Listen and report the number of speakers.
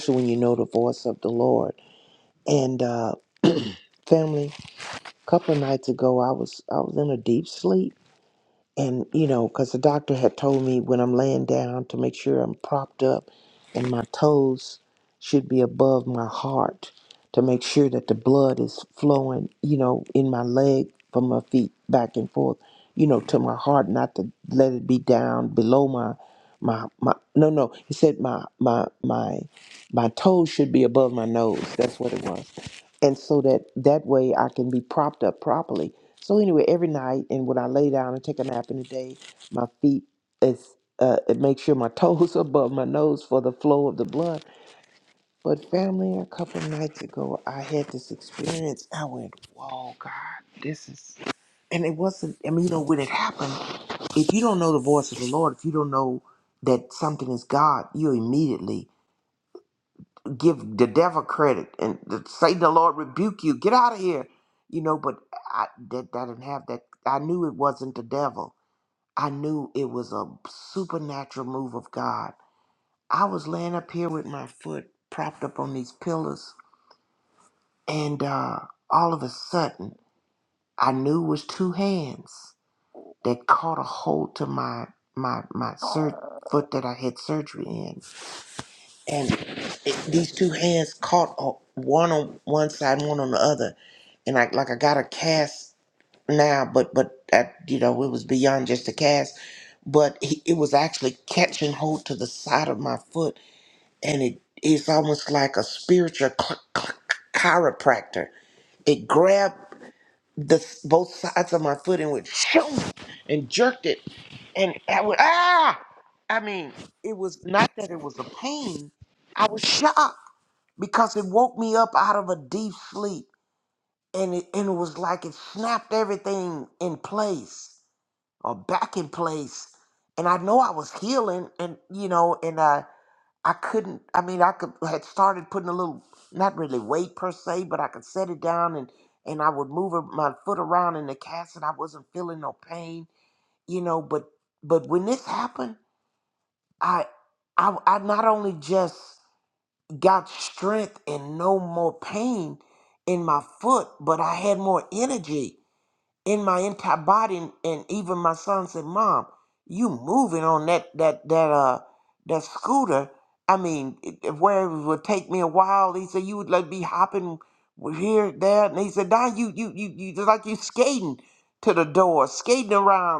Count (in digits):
1